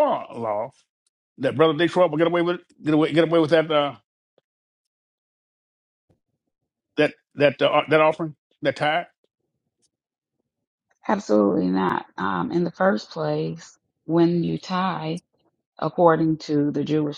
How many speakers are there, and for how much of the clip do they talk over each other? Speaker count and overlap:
2, no overlap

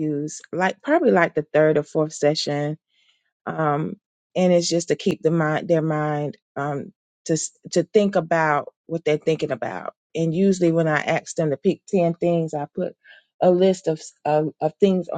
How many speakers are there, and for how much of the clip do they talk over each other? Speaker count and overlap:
1, no overlap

